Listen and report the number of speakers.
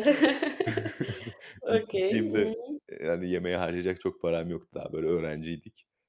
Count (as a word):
two